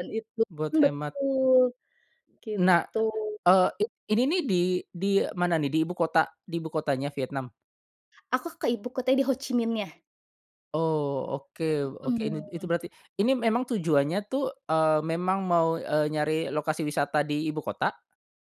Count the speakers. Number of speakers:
two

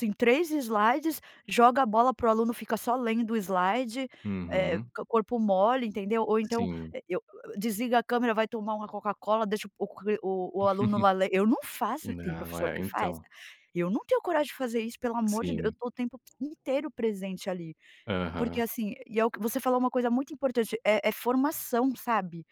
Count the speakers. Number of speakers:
two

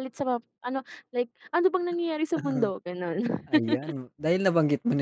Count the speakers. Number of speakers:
two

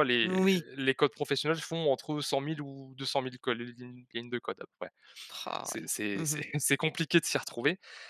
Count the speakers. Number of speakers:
two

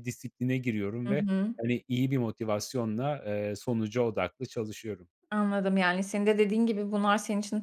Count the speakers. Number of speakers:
two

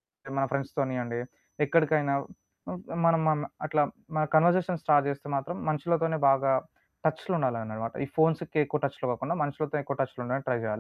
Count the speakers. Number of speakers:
one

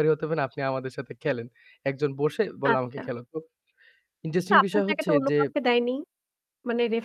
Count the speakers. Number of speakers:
two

